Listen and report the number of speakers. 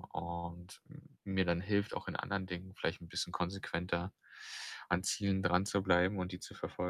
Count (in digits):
1